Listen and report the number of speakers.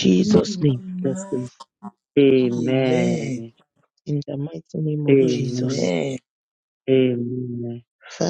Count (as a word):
three